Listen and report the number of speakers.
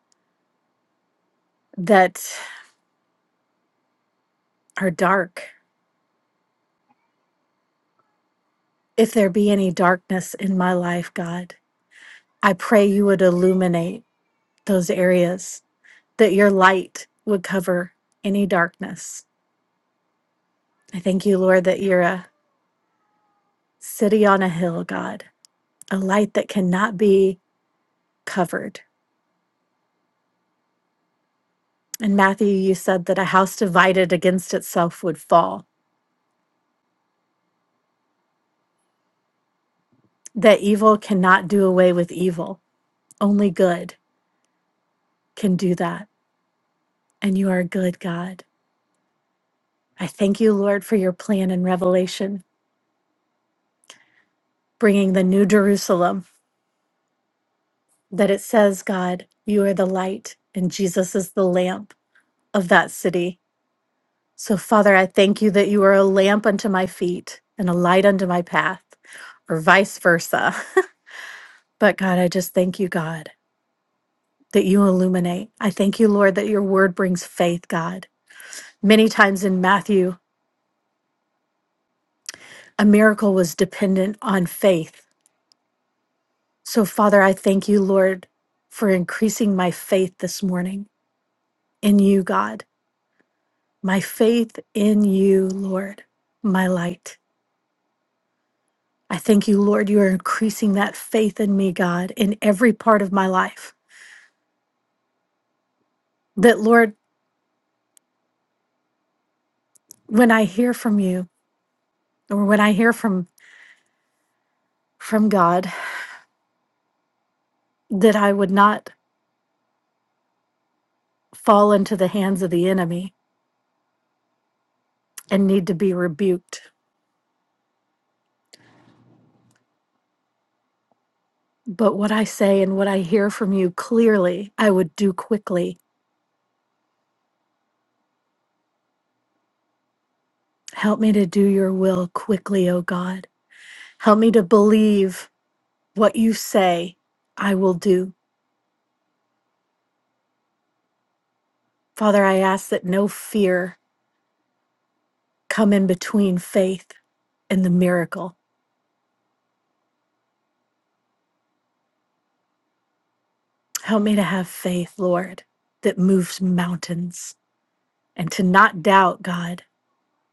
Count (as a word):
one